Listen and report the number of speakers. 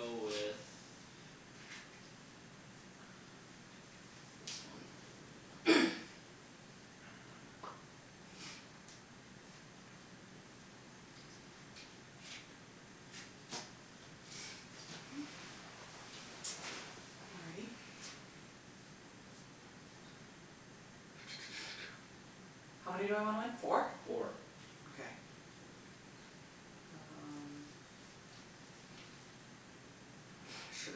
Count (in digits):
2